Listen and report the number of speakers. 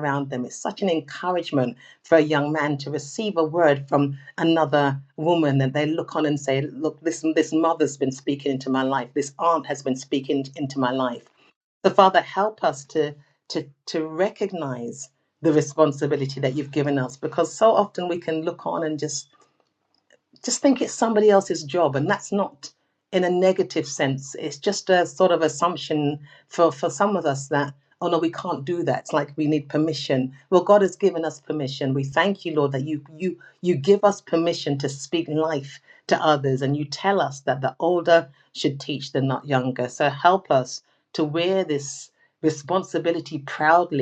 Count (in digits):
1